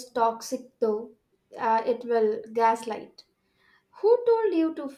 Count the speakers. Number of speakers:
one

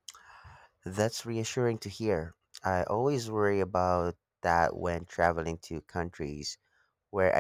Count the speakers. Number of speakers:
one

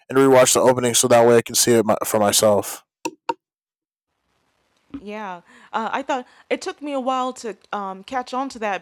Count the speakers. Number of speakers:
two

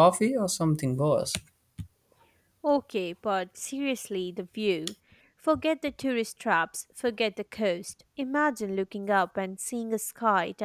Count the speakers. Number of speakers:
two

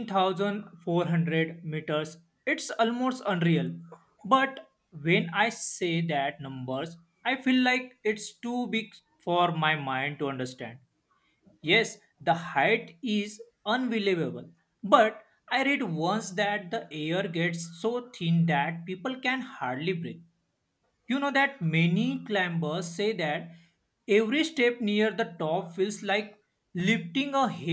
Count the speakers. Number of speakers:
one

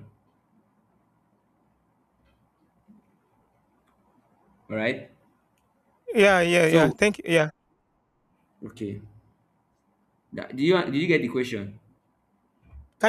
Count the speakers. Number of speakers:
two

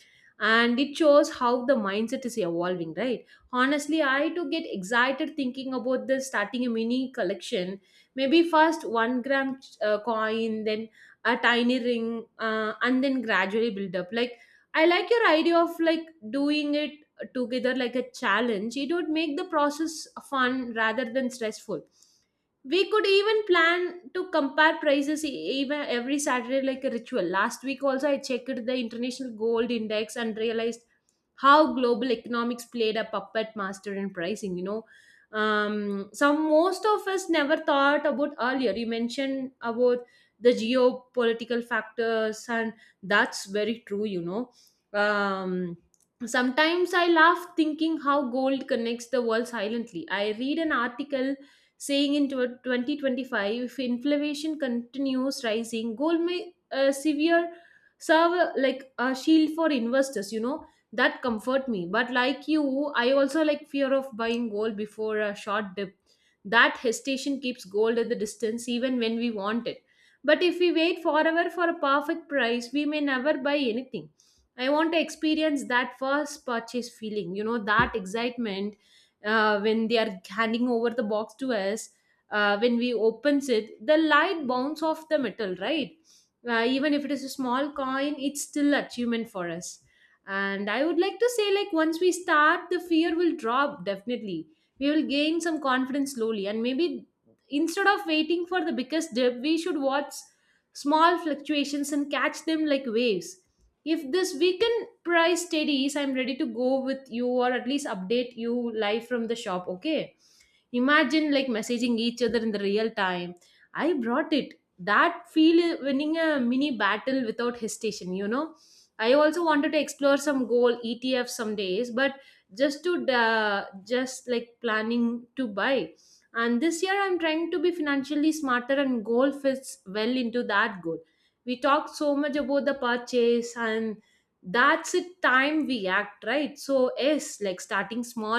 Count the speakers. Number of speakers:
one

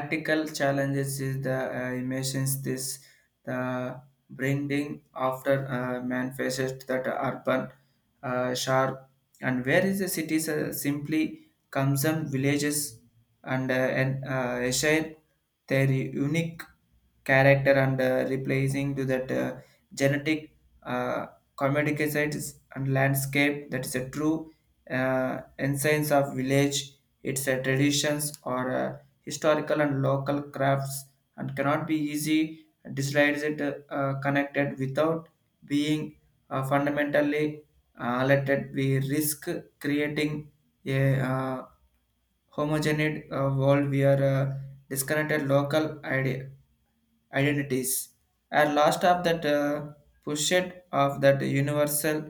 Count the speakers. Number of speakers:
one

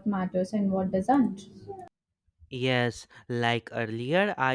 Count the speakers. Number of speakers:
two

